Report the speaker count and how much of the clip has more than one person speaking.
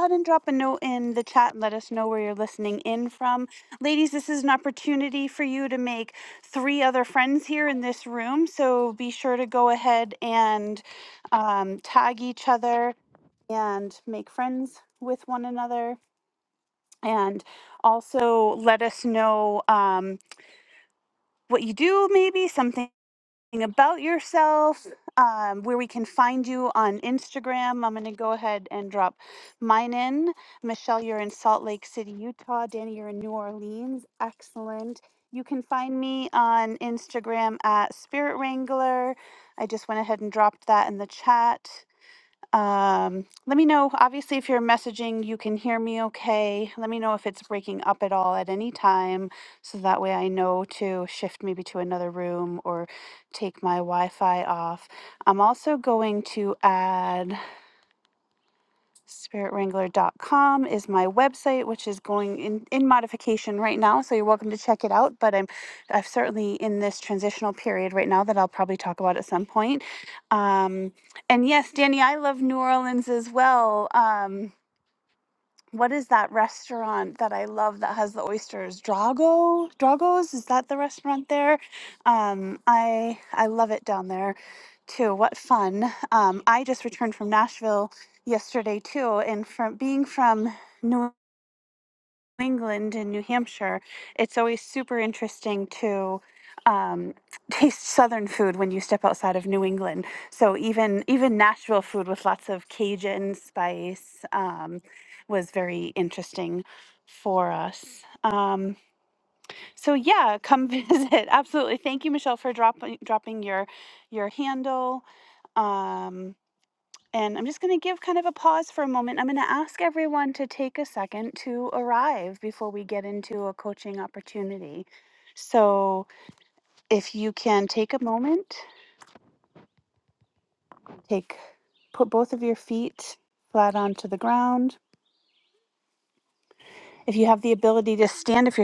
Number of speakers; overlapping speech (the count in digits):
1, no overlap